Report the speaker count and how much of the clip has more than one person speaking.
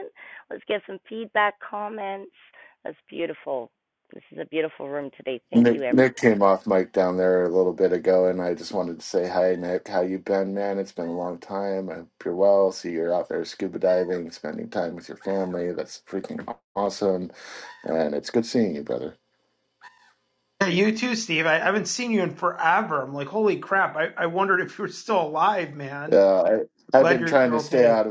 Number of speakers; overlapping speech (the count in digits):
3, about 6%